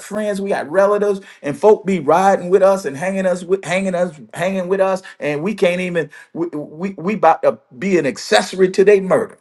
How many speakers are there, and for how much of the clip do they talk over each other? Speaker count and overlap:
one, no overlap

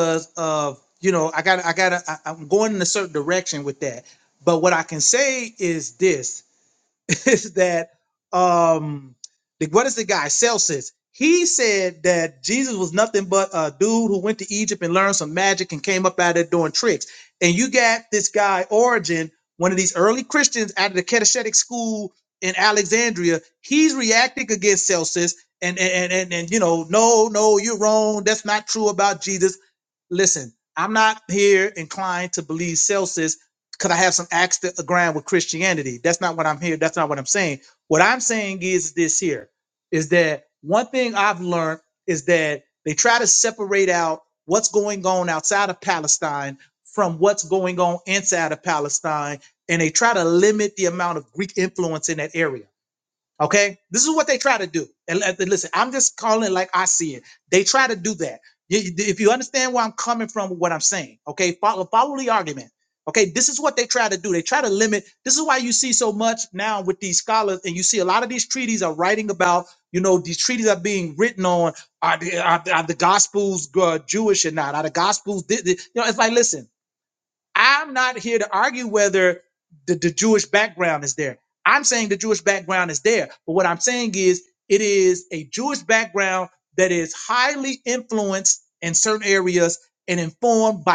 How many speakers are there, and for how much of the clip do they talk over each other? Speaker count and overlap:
one, no overlap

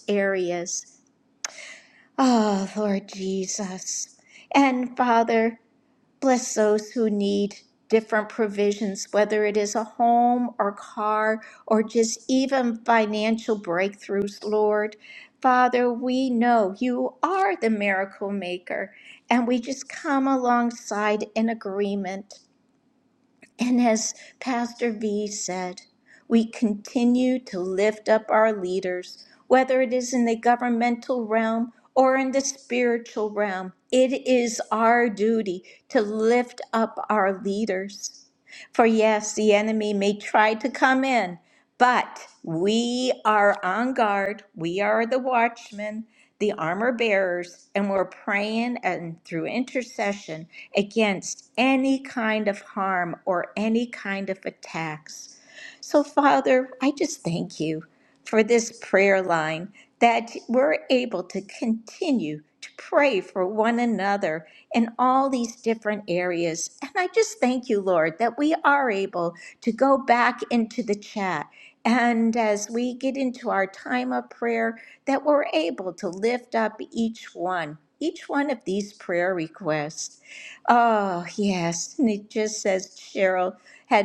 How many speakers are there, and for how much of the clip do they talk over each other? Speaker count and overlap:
one, no overlap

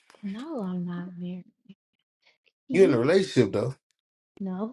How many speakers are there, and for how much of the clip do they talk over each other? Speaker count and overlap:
two, about 8%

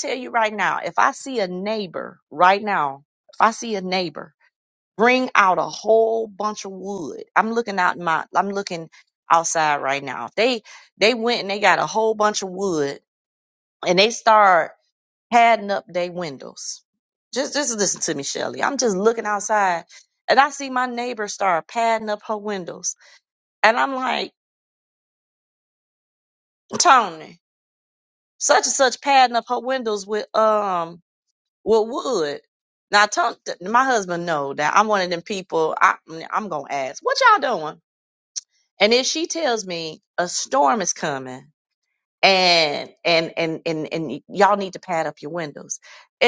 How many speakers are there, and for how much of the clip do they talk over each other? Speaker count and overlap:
one, no overlap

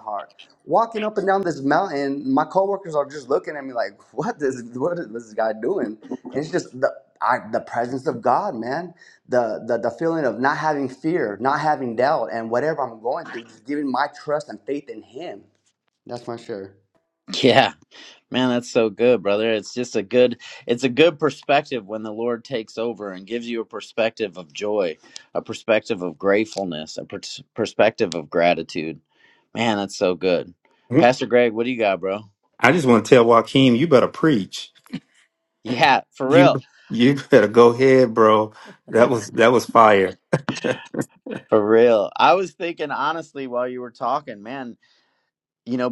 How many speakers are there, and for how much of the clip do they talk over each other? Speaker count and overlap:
three, about 1%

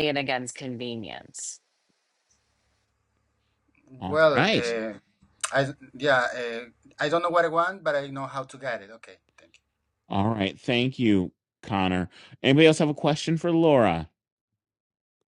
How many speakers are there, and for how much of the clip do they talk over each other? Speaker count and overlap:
three, about 4%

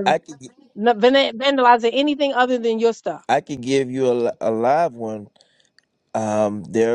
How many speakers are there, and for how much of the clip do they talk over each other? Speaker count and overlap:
two, about 1%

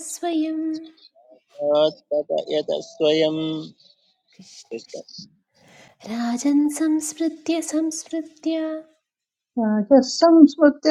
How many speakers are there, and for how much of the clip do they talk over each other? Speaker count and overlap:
three, no overlap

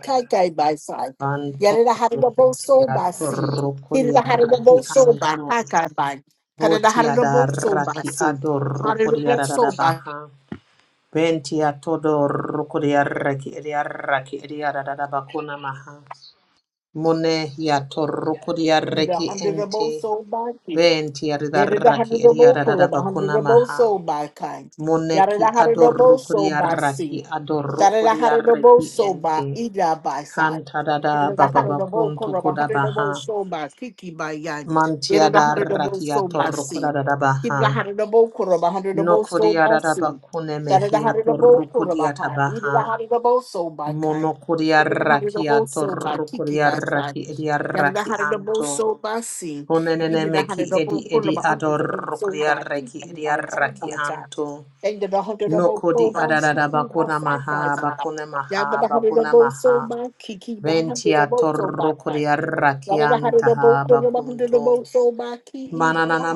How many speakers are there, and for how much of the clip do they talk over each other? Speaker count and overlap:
two, about 57%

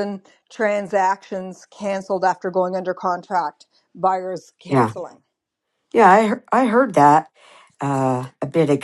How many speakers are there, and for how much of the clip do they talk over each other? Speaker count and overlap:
two, about 2%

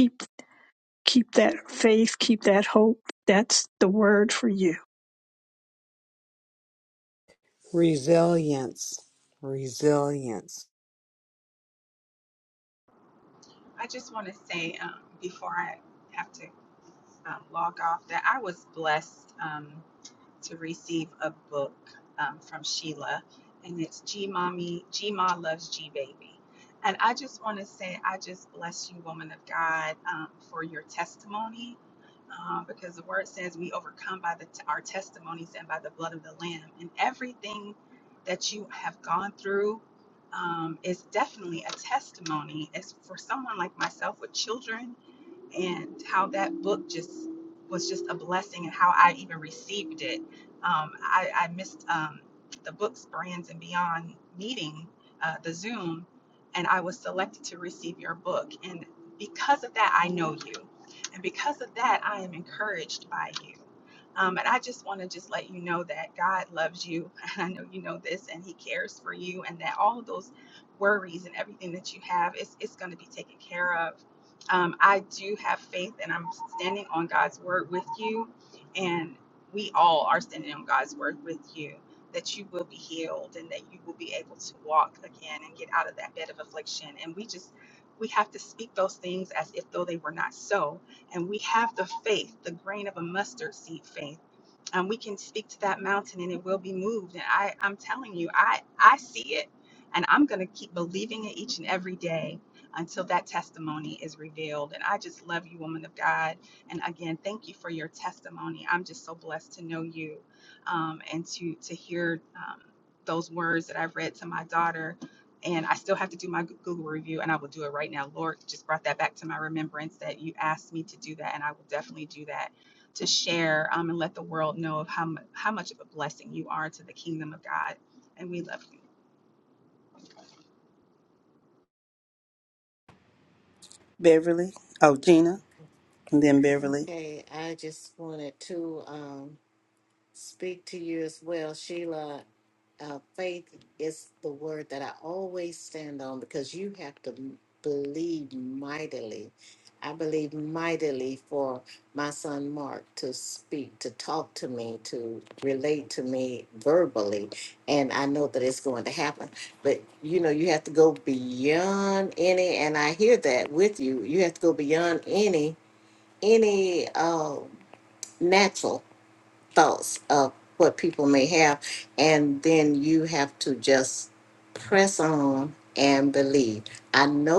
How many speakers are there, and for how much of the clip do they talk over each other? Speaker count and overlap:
five, under 1%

